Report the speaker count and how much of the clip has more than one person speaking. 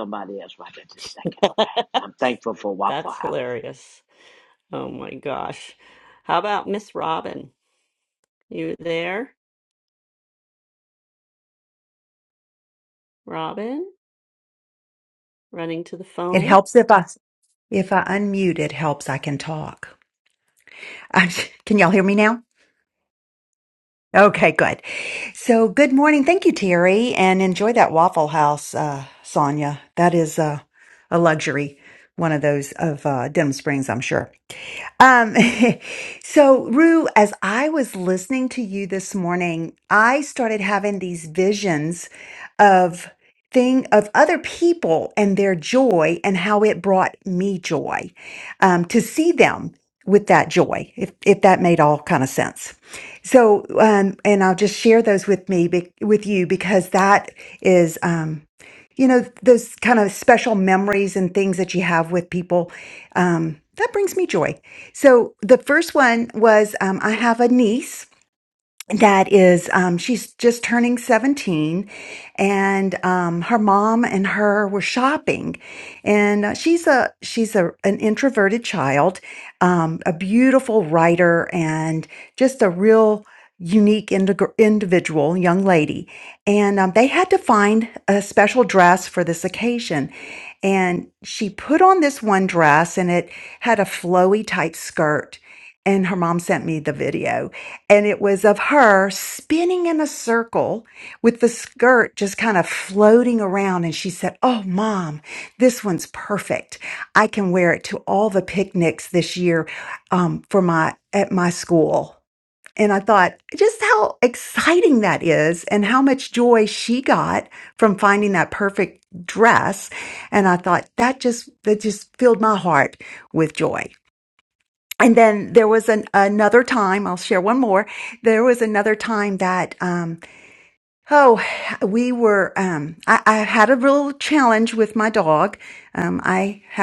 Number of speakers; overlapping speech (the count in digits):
3, about 1%